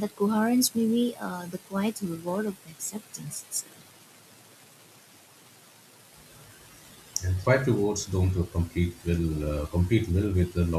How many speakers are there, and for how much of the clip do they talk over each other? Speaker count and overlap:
two, no overlap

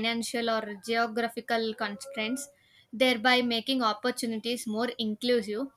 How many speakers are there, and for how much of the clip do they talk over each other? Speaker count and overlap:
one, no overlap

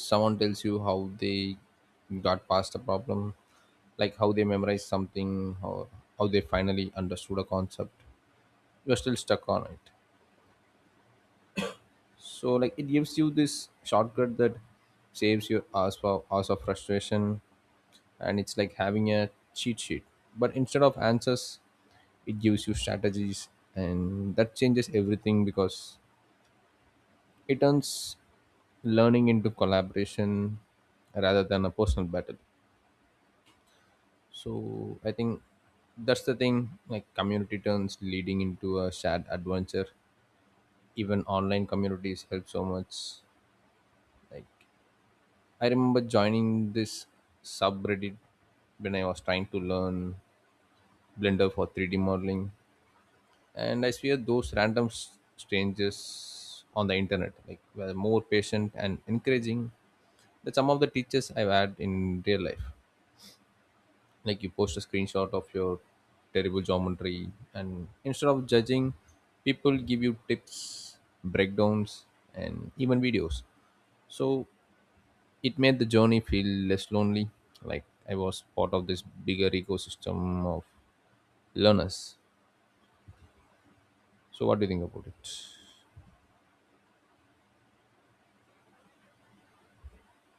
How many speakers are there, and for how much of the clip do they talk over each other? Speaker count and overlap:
one, no overlap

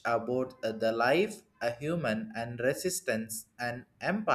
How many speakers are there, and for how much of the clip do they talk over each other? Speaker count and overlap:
one, no overlap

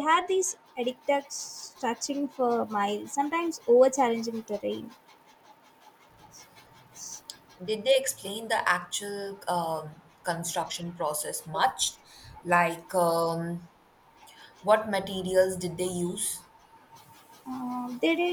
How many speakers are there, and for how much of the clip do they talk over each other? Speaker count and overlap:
two, no overlap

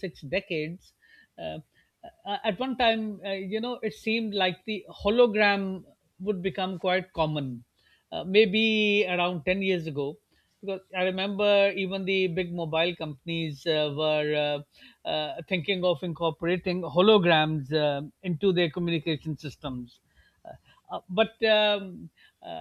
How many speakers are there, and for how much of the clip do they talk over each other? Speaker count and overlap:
one, no overlap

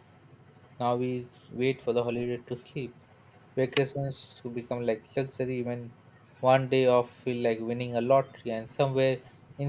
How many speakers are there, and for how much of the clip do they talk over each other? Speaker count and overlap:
one, no overlap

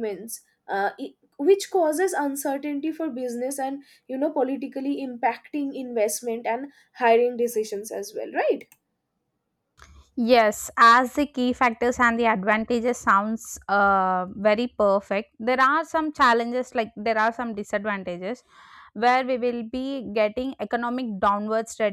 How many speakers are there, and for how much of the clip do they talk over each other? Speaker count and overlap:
two, no overlap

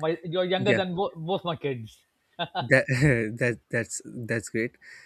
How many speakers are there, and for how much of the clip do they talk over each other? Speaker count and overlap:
two, about 4%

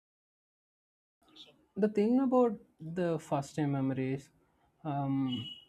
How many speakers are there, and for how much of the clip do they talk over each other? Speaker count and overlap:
one, no overlap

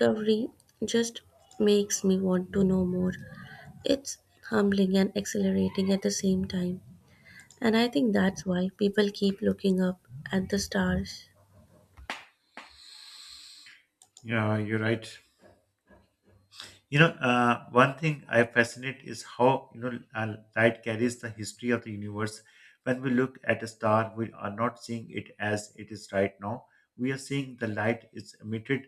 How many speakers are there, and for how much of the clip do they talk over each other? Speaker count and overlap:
two, no overlap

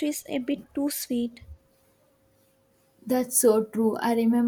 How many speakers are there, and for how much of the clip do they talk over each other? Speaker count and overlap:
two, no overlap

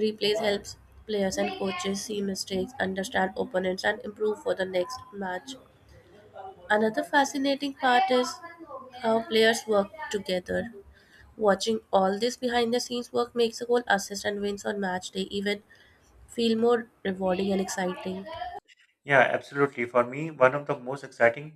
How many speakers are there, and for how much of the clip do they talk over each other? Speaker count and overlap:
two, no overlap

